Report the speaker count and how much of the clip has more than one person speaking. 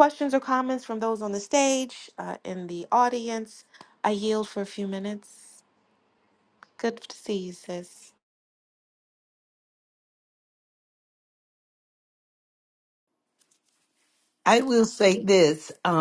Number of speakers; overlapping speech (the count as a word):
two, no overlap